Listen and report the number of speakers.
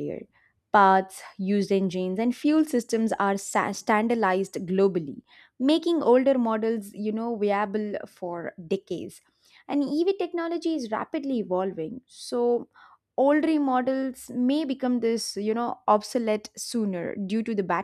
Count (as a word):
one